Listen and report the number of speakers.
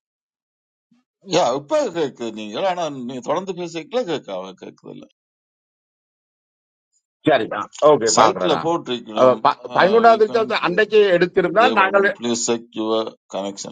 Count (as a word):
two